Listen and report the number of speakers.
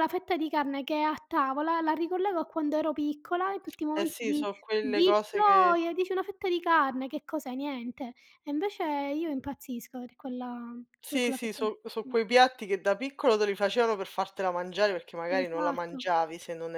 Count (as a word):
two